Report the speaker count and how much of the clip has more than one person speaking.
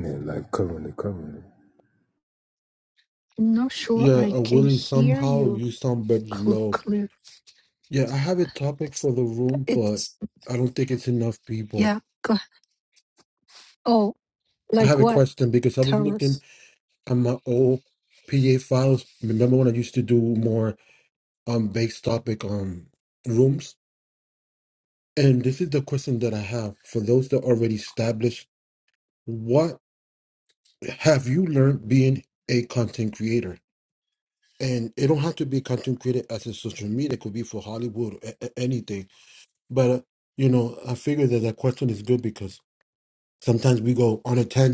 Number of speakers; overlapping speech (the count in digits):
3, about 7%